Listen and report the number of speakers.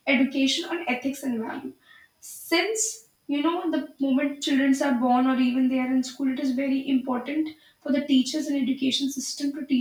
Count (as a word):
one